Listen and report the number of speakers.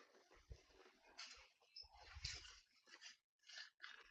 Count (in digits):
0